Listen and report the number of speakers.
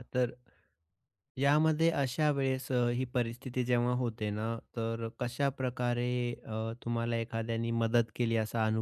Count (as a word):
one